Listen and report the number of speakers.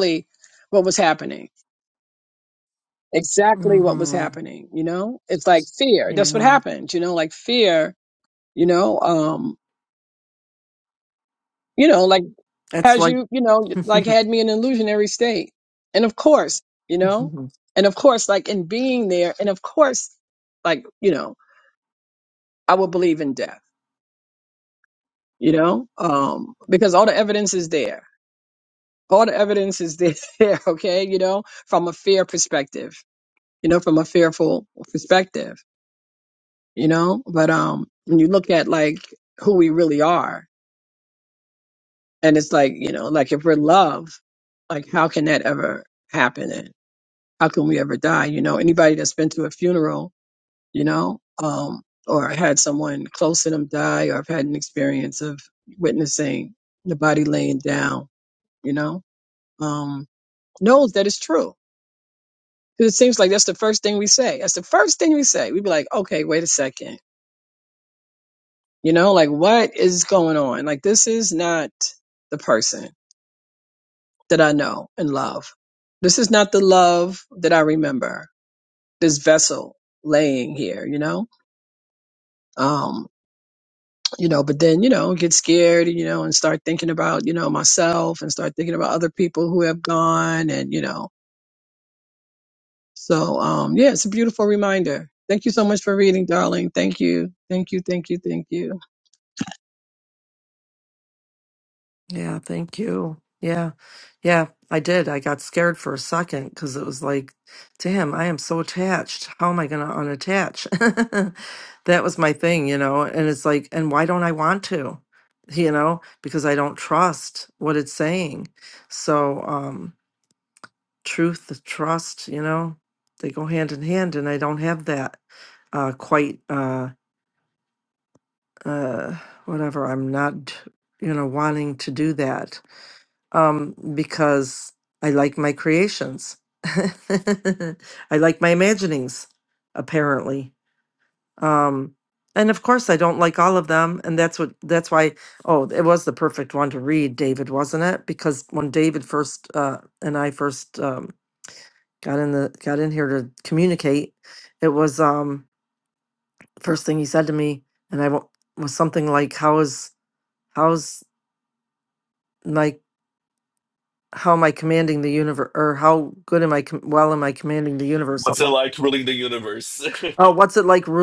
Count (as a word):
three